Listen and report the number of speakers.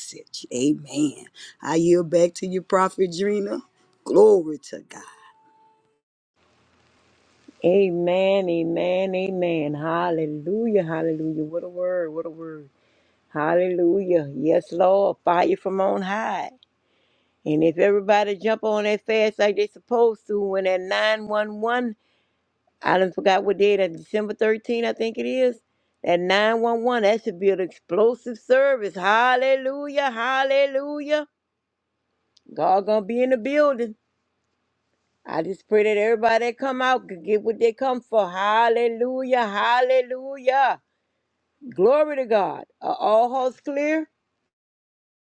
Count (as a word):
two